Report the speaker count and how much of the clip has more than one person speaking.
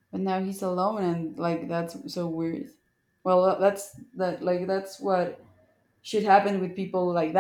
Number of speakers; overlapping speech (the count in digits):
1, no overlap